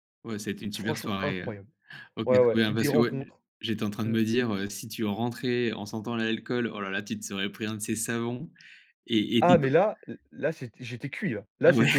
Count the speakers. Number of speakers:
2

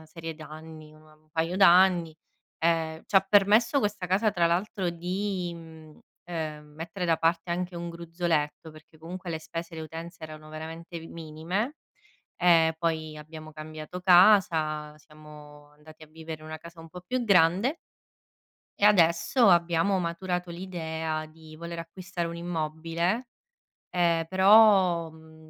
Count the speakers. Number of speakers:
1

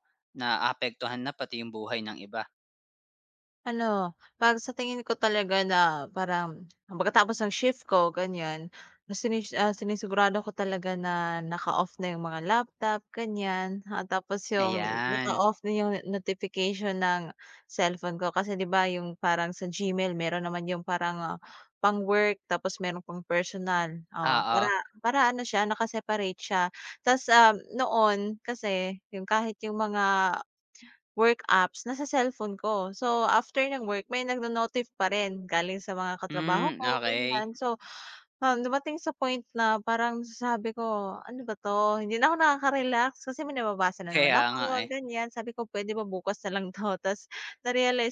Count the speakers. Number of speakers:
2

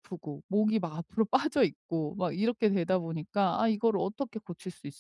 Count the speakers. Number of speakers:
1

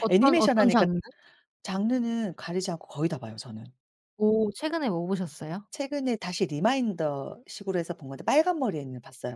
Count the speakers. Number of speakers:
2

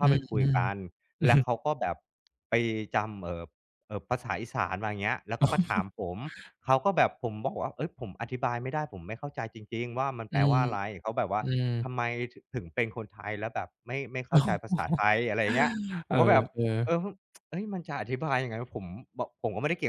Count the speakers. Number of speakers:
2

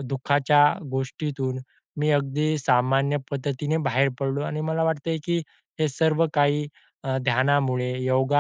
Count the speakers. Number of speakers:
1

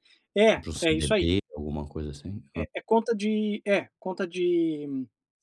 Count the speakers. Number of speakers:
2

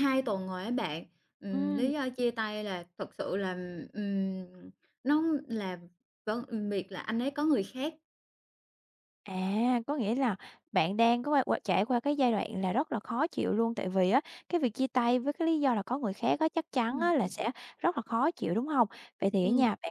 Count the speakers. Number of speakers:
2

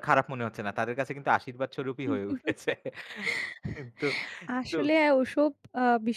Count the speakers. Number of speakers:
2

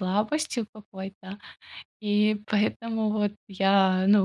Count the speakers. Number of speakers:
1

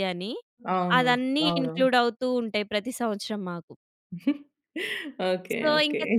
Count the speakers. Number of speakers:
2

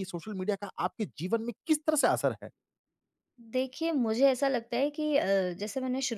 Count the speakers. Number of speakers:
2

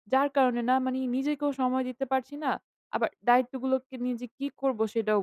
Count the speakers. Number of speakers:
1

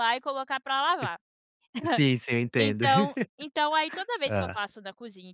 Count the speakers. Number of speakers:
2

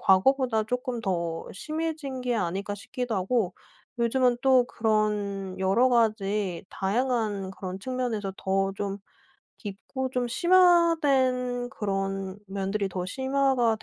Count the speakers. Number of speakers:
1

